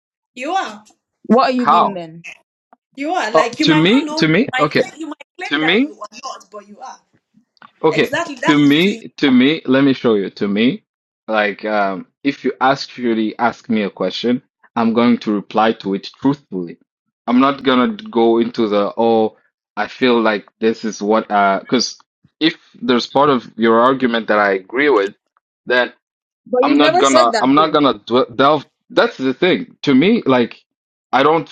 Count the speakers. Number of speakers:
three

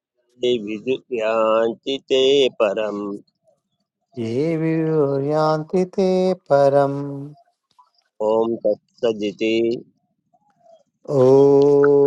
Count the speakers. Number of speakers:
two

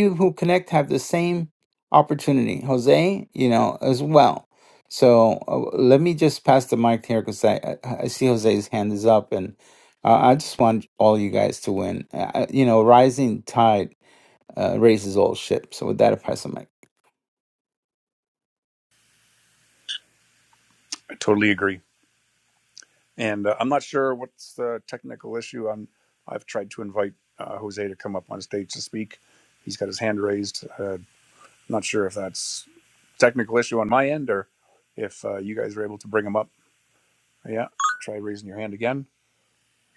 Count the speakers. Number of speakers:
two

